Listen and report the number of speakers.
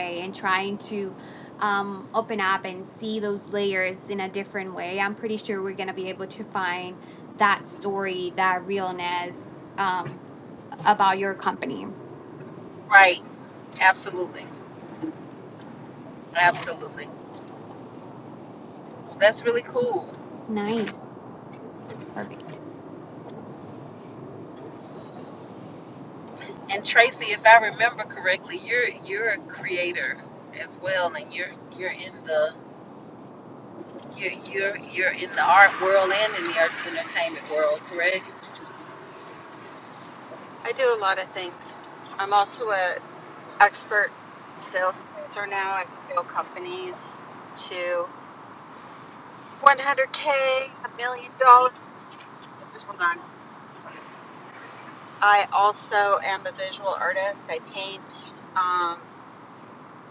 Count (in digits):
3